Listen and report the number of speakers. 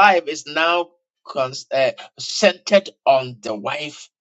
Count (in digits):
1